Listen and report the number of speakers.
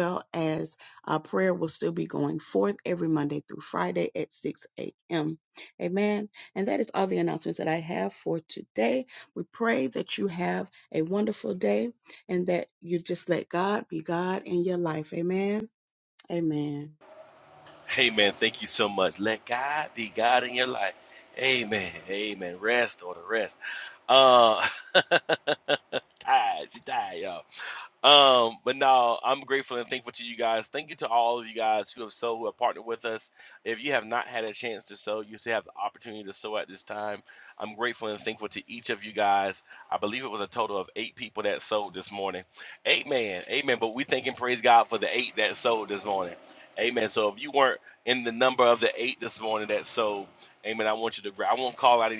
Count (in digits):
2